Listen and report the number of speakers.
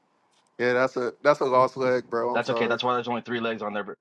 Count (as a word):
two